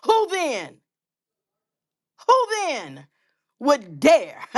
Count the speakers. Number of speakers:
1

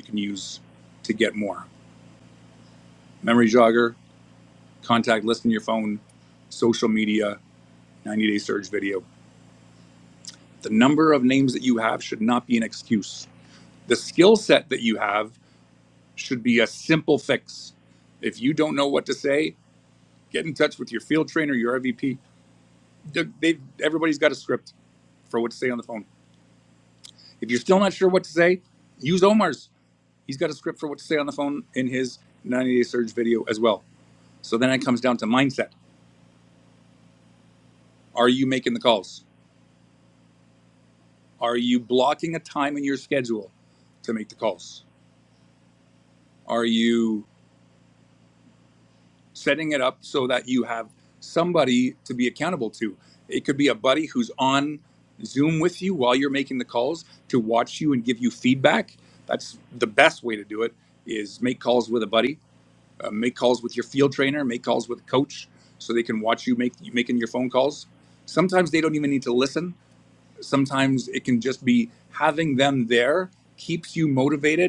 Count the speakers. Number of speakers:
1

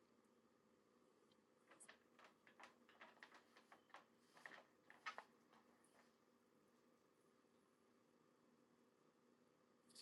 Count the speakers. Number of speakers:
0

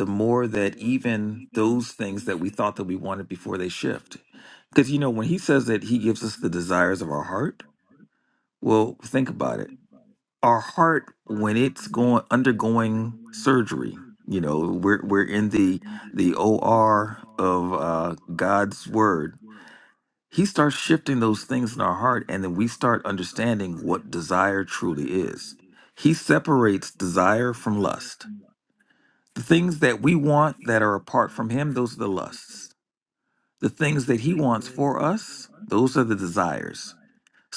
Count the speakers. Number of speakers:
1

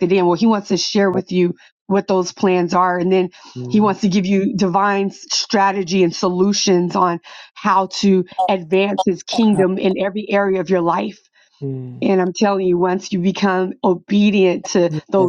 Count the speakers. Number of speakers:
2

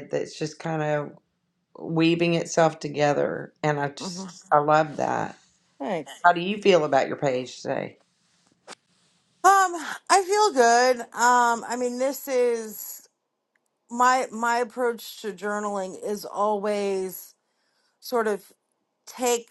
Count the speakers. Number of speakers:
2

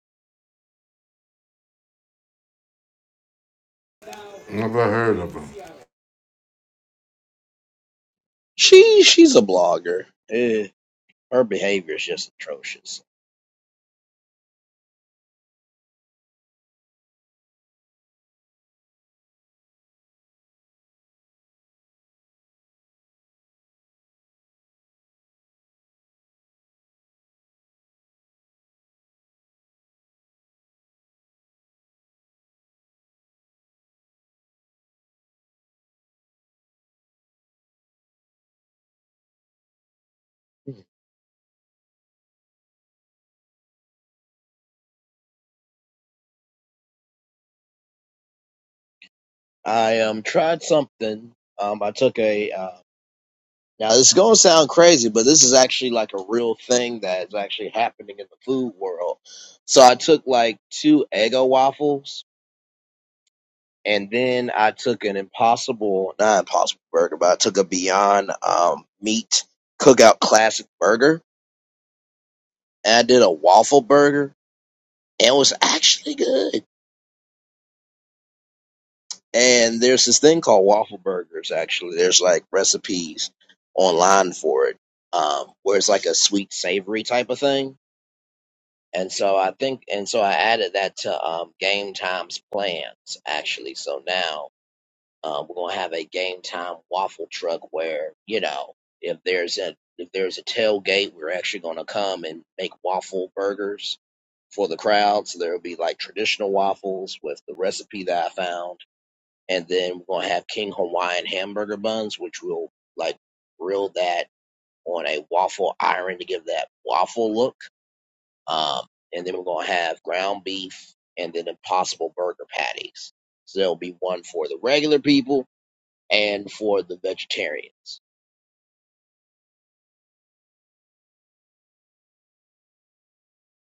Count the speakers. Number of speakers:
2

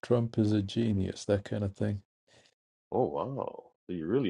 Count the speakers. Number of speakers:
2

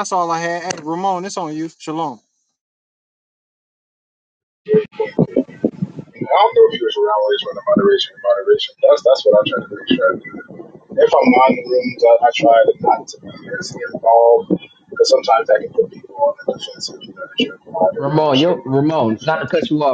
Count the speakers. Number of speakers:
3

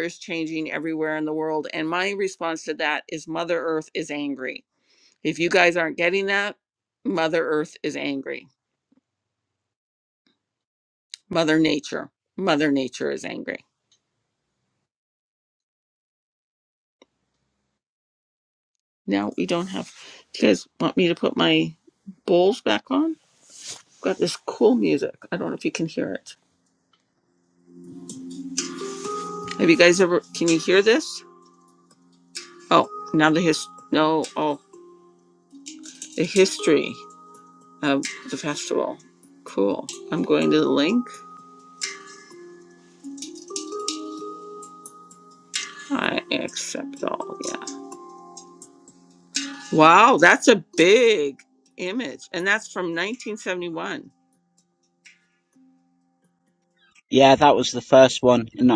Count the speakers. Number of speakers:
2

